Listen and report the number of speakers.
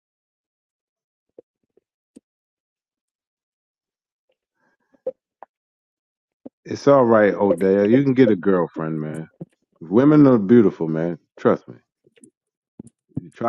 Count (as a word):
one